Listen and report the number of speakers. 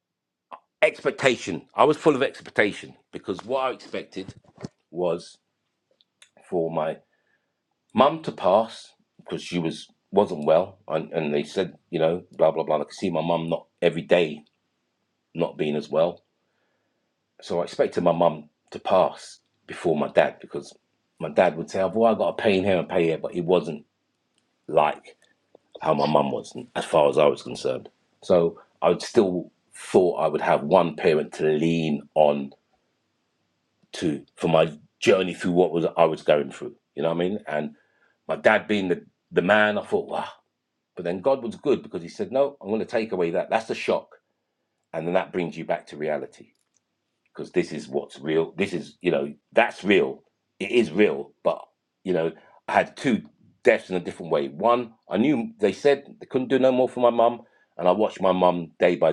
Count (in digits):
1